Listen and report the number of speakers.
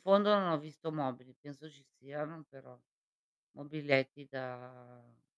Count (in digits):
1